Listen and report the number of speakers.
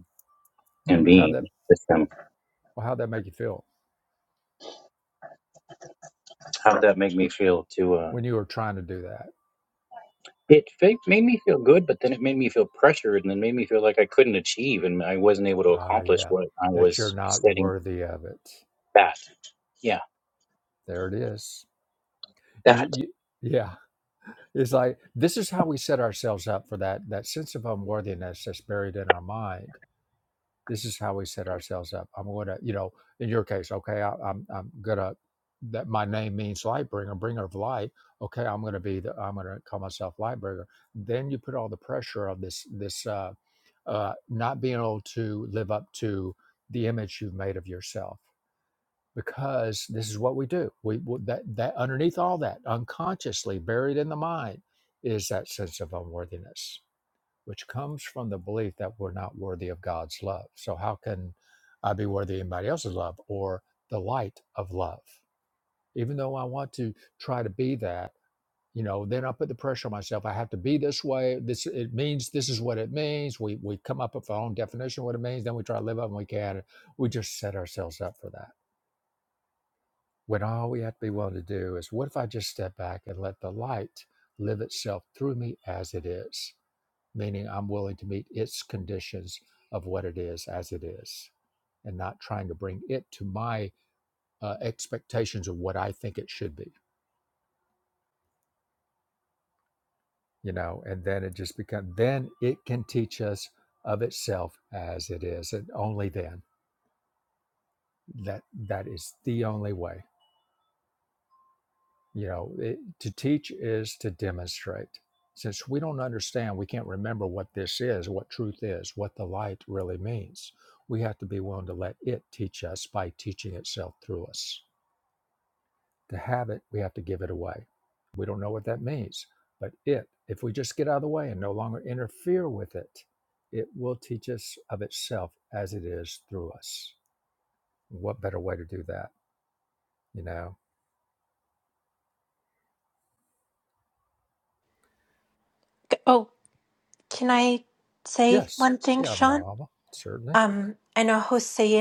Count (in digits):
3